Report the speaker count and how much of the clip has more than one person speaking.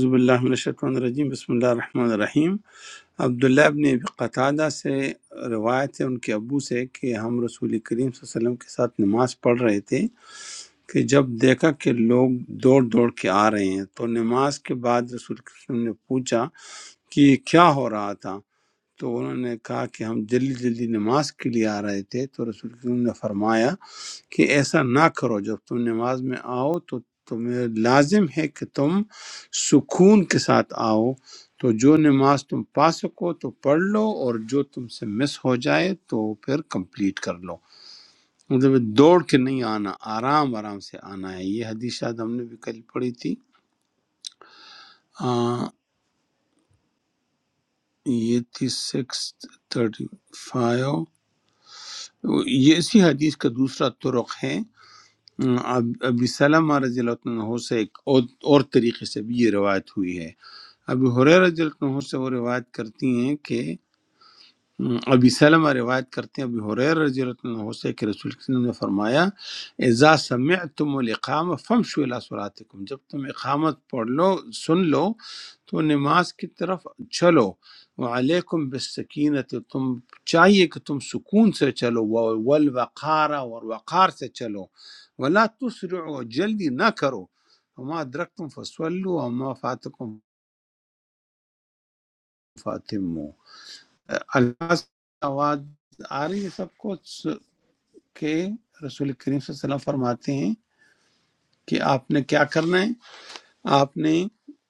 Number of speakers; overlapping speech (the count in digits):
1, no overlap